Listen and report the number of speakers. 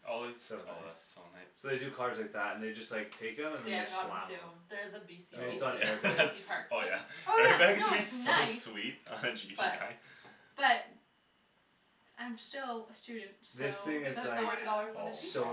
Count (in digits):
4